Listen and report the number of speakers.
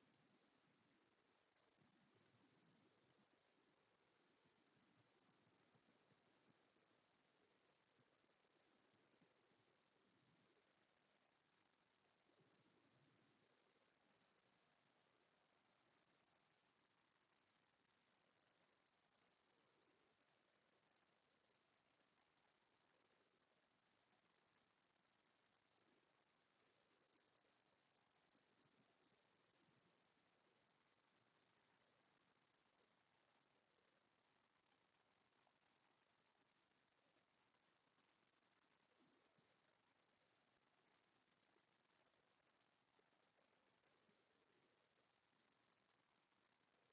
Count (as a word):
zero